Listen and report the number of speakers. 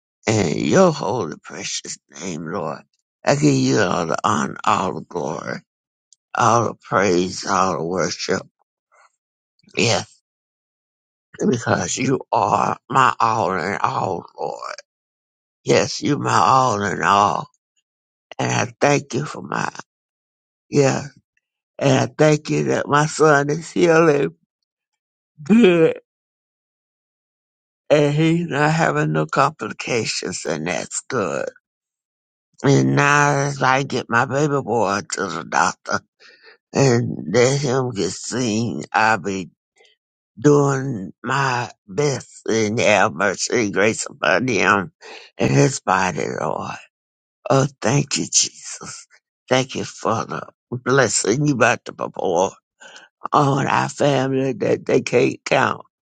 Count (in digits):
1